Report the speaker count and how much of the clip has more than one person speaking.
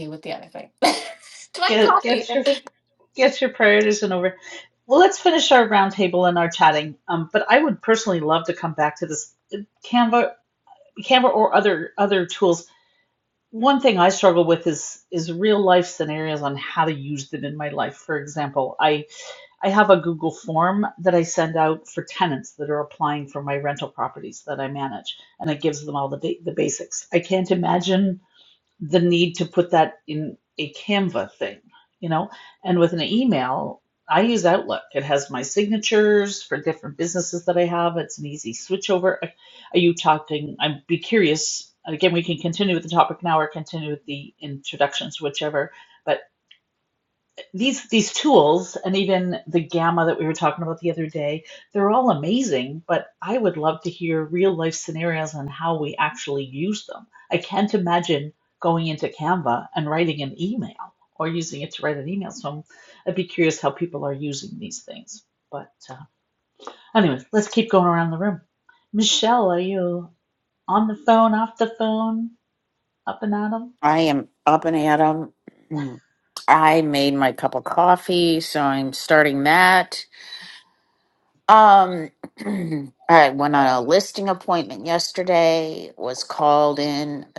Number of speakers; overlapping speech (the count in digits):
3, about 1%